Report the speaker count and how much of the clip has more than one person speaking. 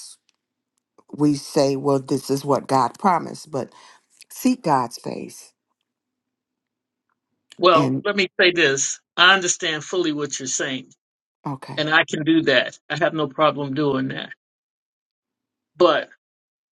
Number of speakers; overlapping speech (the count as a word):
two, about 2%